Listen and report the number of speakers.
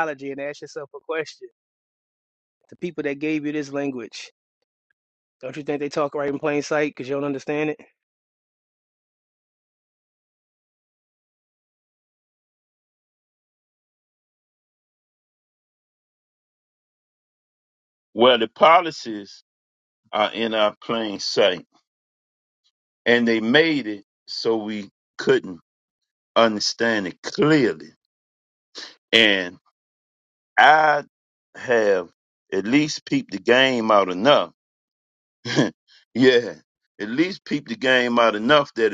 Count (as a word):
two